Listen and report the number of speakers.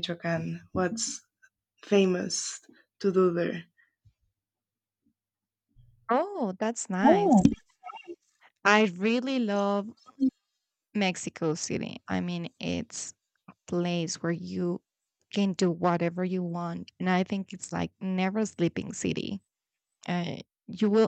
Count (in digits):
2